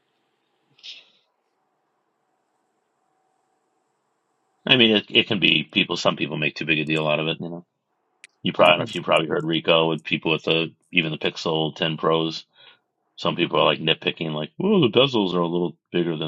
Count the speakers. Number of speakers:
1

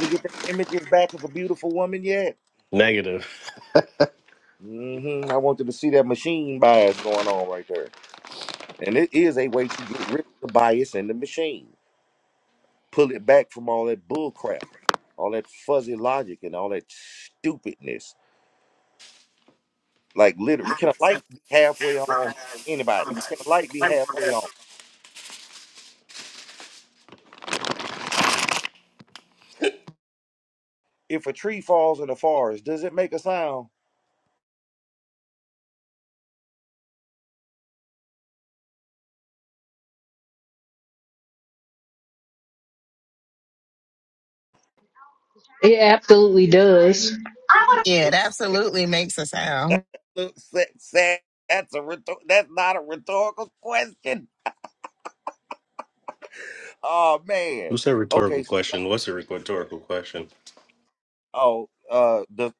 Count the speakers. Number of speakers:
4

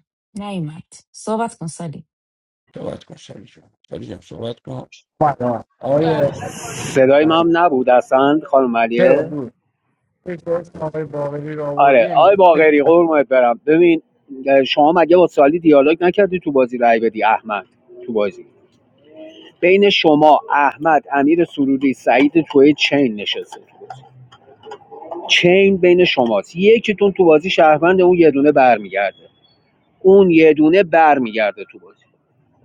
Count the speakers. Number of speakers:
3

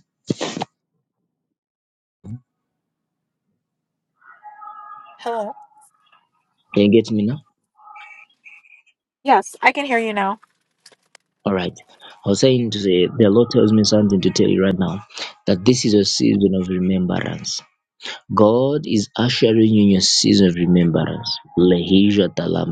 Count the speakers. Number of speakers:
2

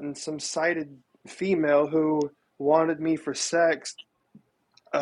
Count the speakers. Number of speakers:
1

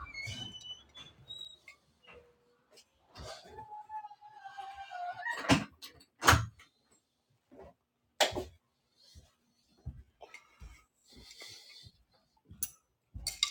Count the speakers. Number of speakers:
0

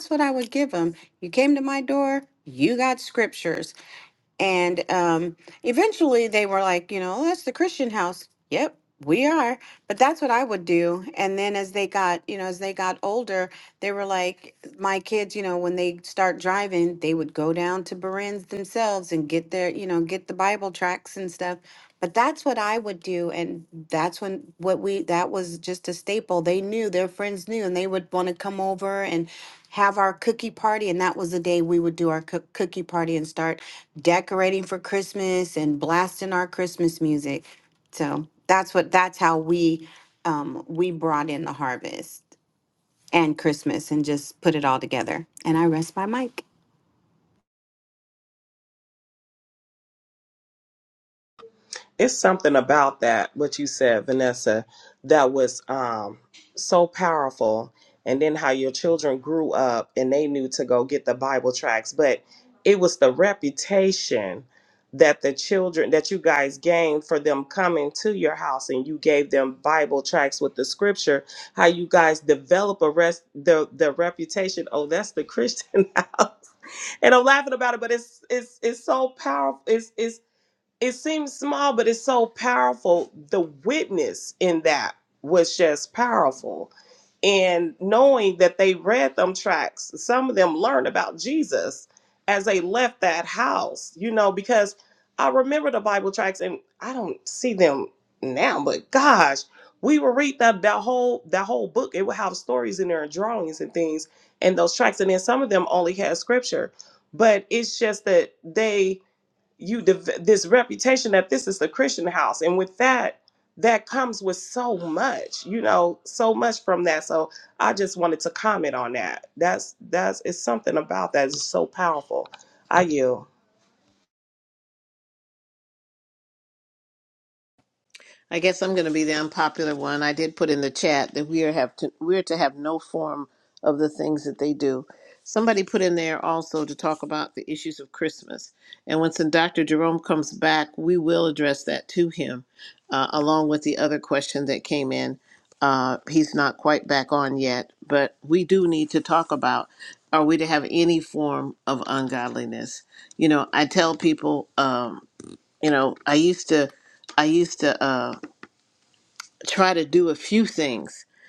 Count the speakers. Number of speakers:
3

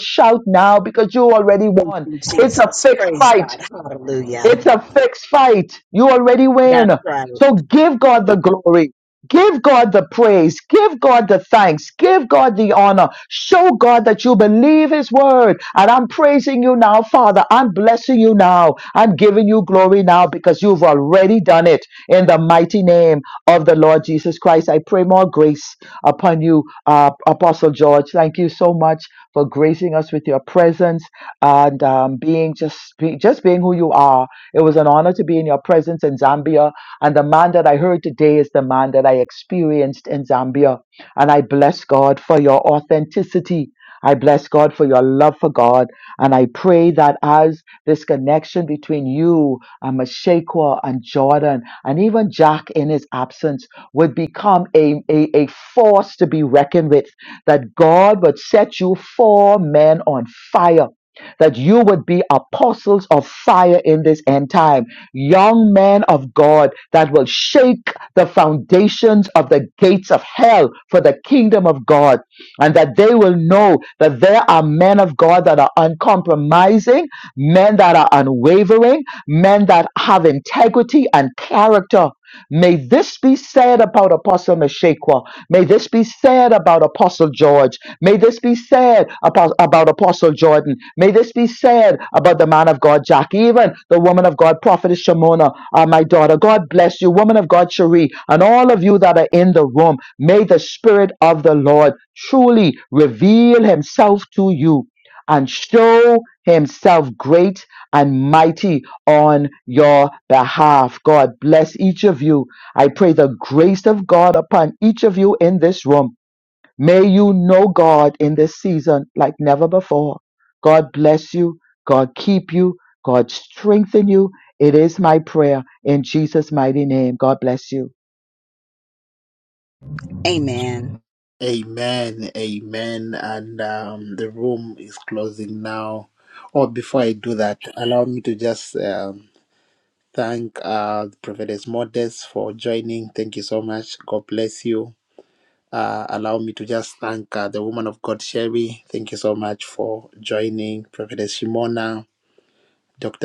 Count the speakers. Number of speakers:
3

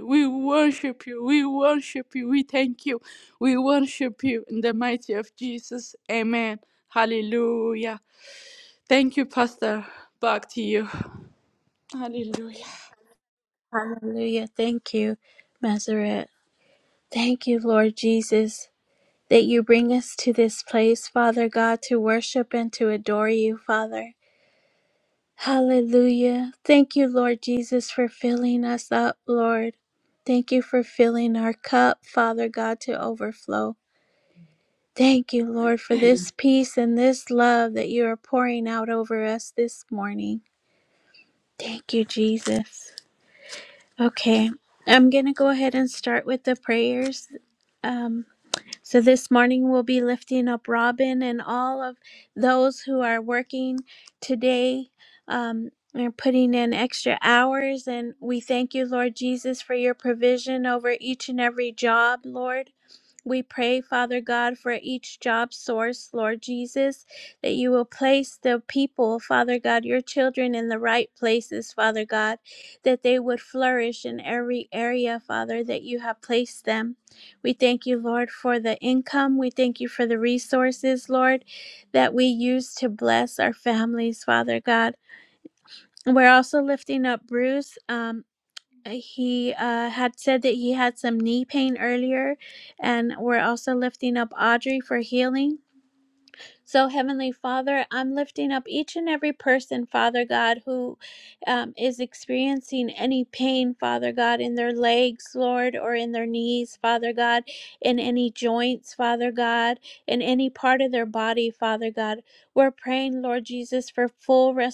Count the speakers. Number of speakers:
2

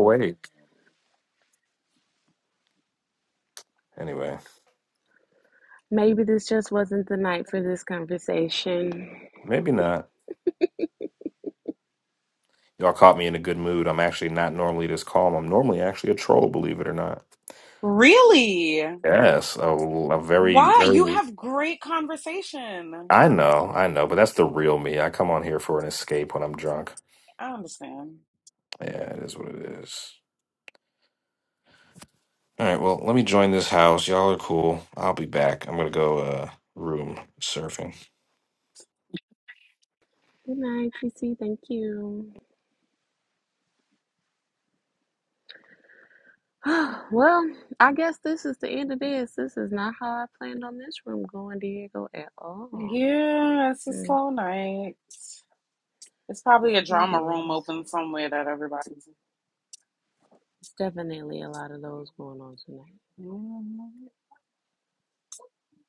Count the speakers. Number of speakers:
3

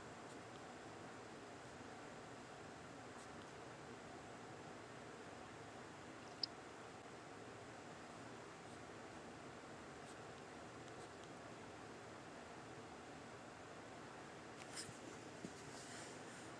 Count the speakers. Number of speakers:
0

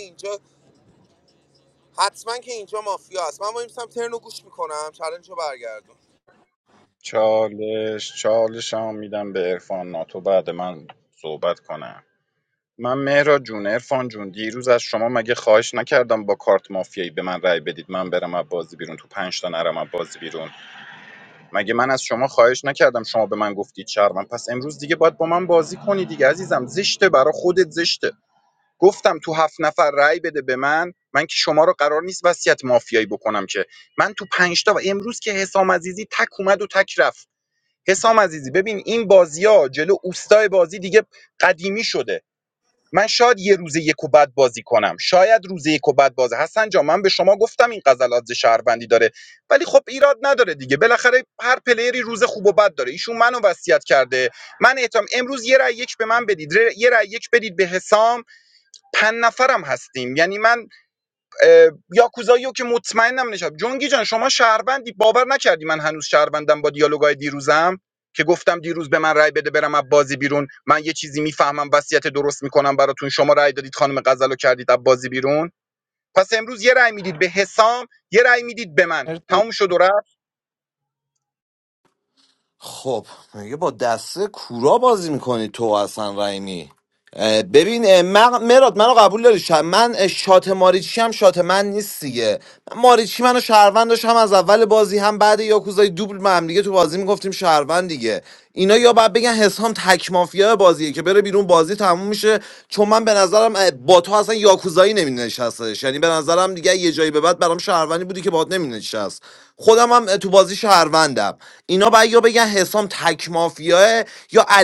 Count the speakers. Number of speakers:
3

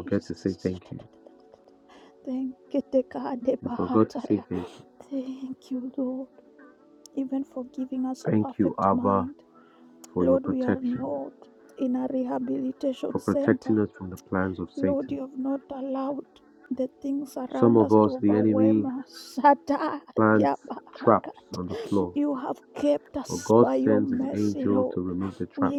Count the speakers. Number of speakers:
2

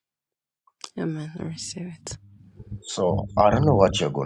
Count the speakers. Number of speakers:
2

